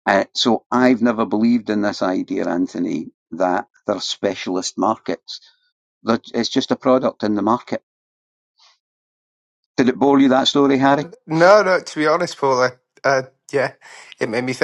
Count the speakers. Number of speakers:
two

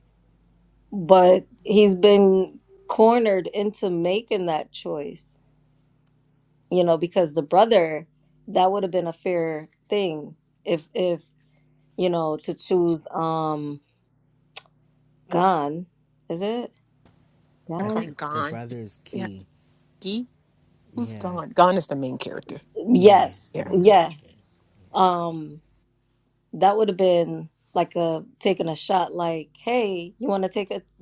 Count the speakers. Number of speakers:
three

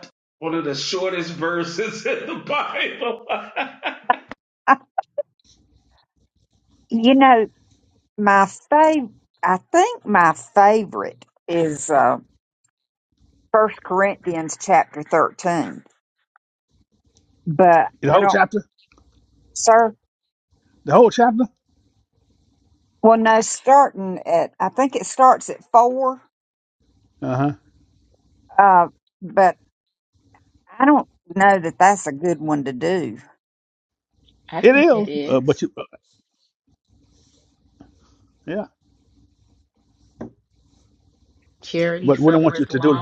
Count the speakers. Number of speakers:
four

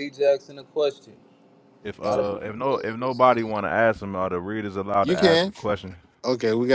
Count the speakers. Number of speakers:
three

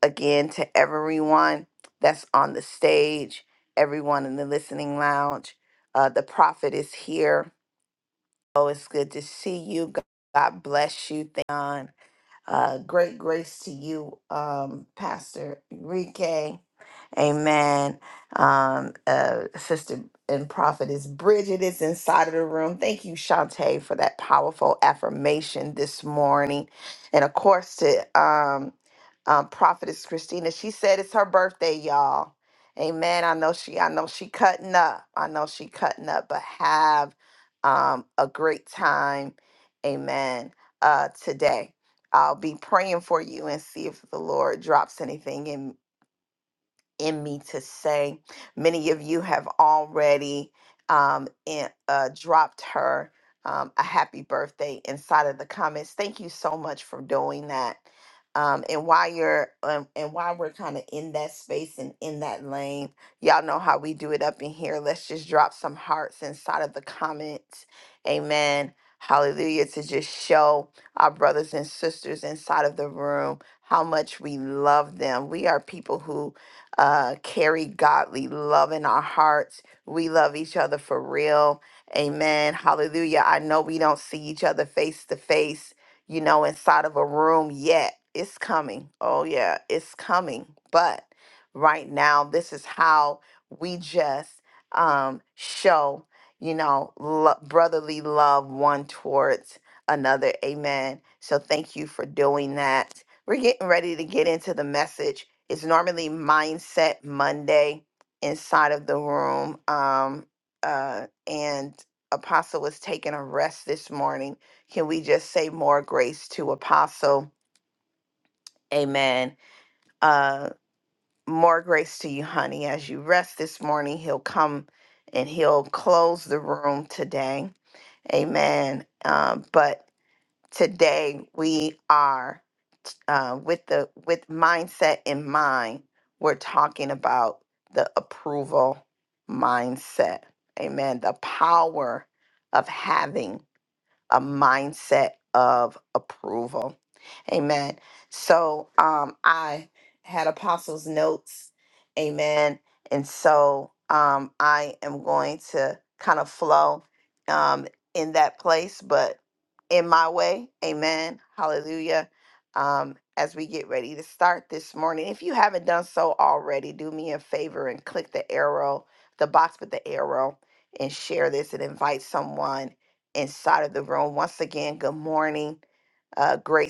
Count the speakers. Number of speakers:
one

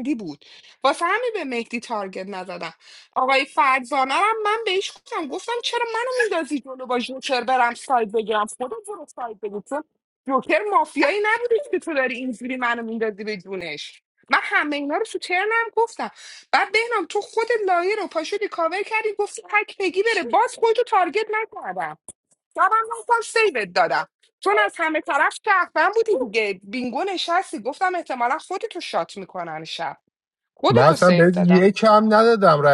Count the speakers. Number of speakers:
two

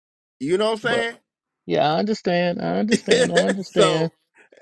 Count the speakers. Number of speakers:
two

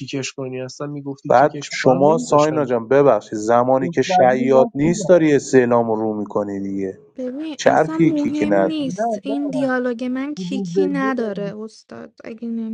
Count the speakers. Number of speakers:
three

